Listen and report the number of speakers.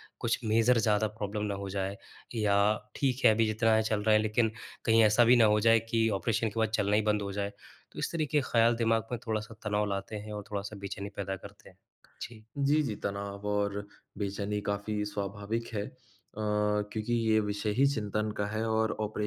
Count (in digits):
2